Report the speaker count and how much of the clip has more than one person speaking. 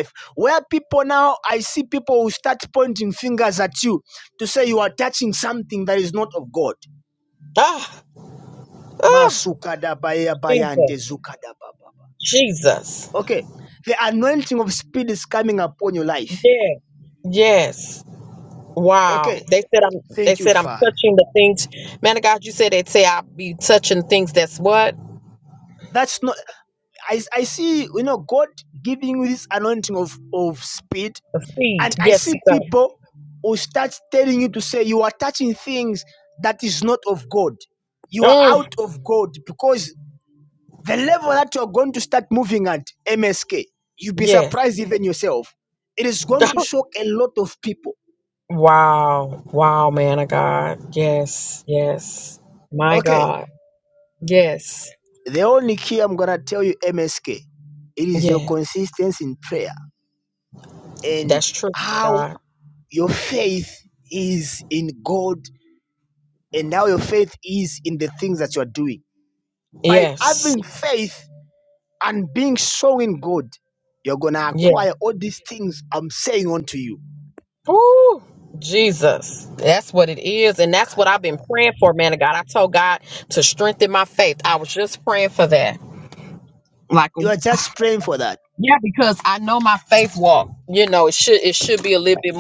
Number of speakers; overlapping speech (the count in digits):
2, about 6%